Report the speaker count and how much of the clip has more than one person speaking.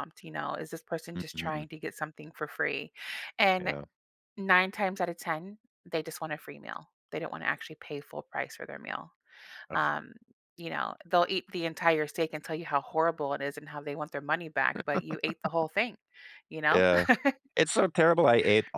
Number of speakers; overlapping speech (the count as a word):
two, about 4%